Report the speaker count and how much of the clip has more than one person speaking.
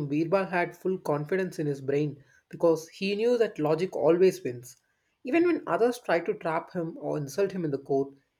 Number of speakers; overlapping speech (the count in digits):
1, no overlap